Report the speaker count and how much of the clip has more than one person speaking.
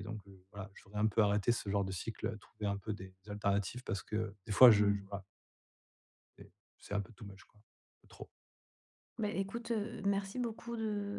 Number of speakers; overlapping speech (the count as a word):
two, about 3%